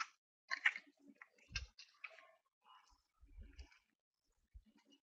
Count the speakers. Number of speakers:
zero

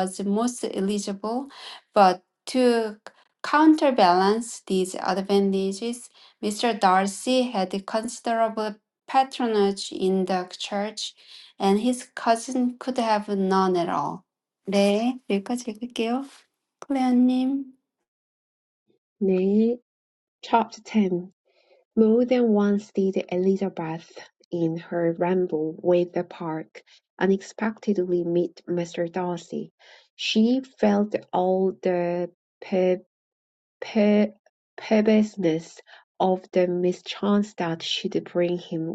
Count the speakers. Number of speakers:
two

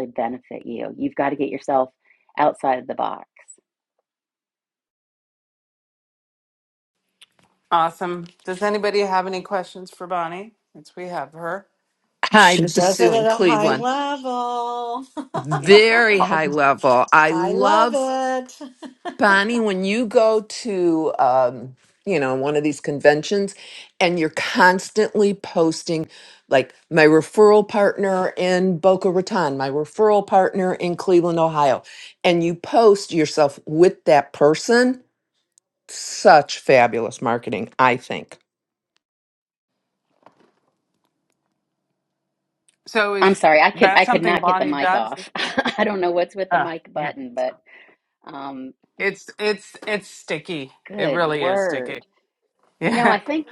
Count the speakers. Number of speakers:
four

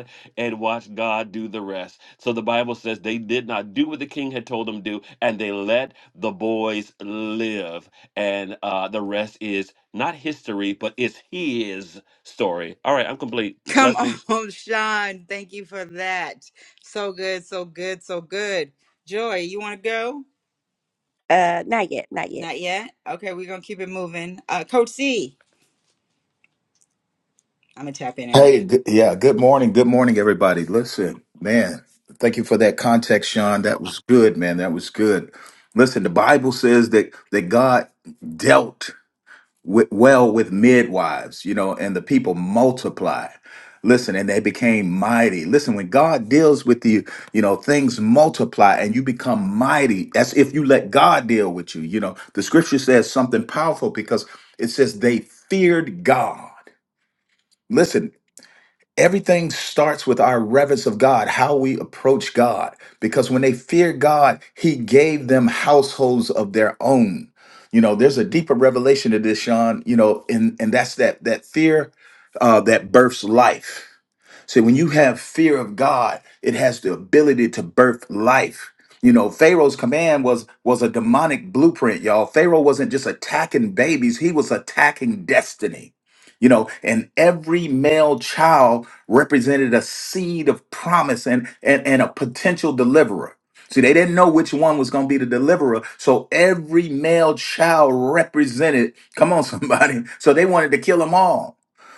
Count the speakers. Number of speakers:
four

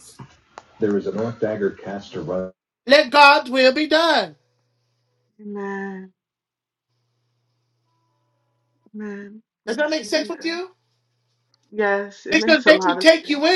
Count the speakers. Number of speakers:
three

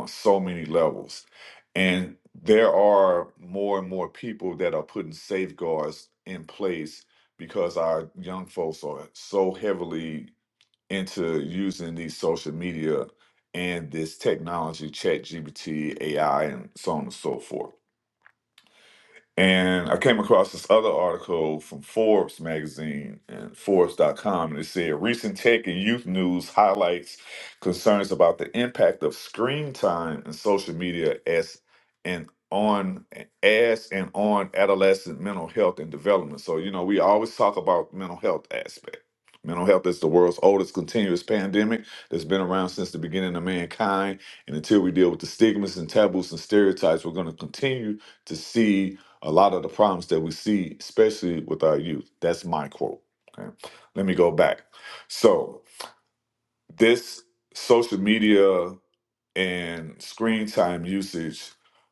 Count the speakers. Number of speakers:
one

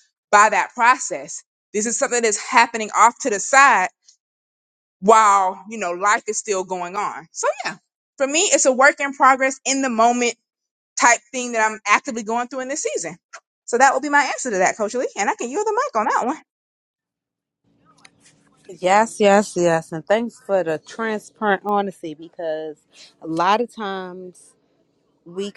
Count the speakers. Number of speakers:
two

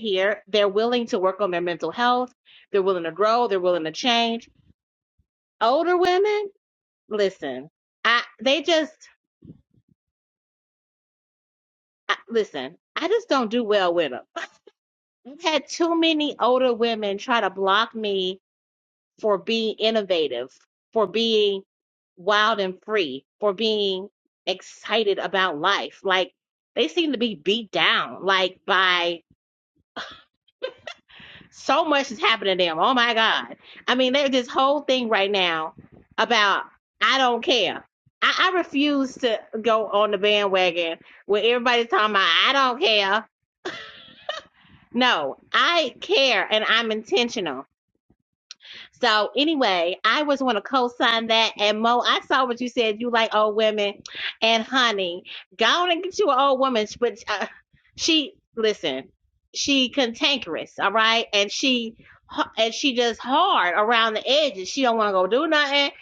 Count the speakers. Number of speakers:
one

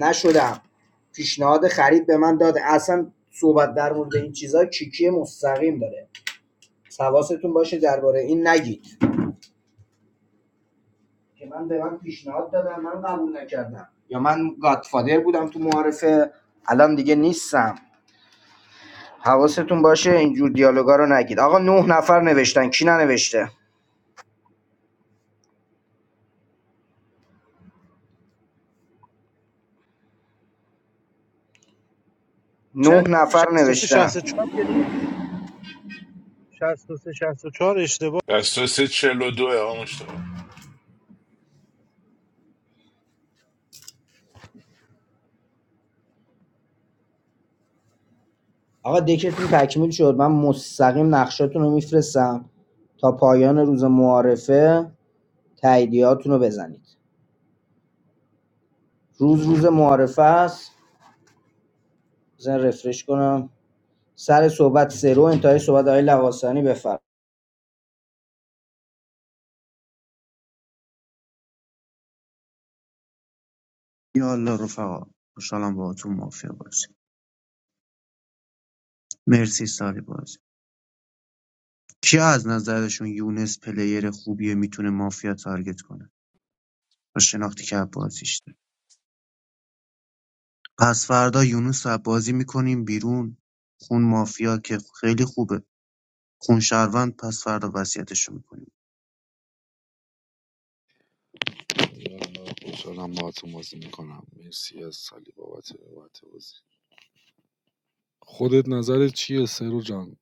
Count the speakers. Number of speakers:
five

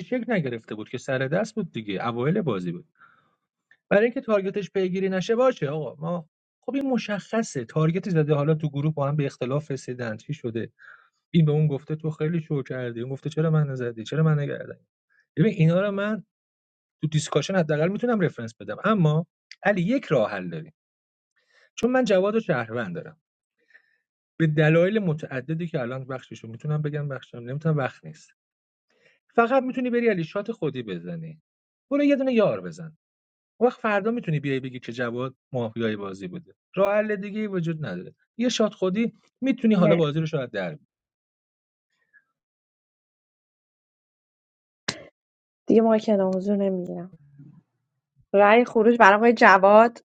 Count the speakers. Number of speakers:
two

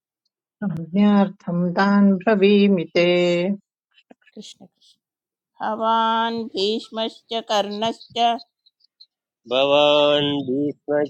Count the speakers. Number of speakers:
three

